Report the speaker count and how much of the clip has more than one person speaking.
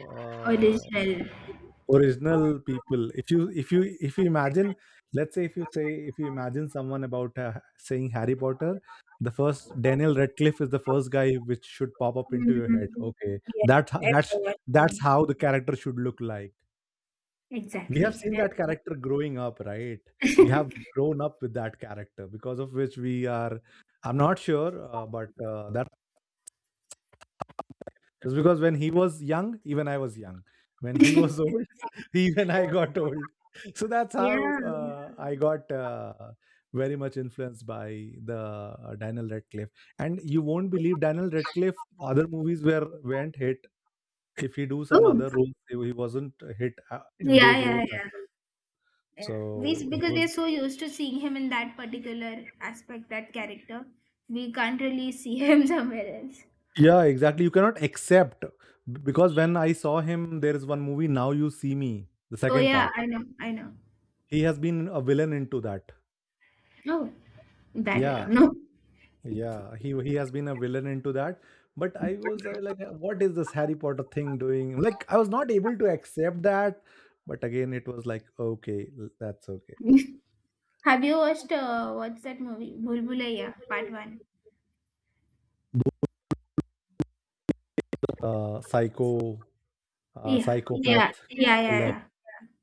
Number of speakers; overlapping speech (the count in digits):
2, about 7%